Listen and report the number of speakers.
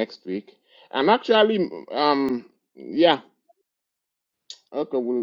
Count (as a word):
one